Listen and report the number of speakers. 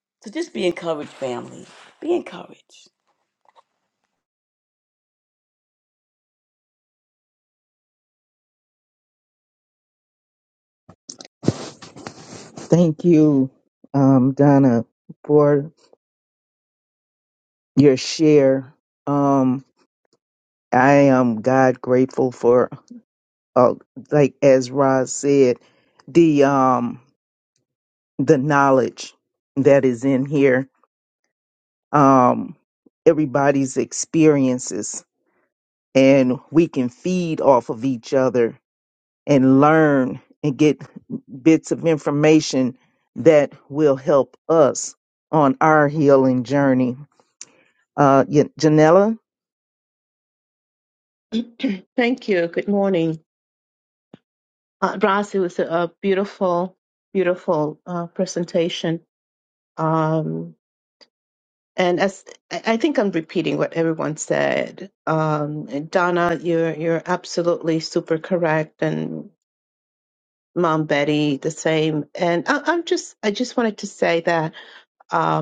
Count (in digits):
3